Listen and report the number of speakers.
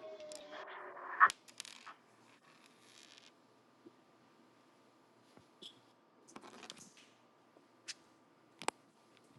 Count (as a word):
zero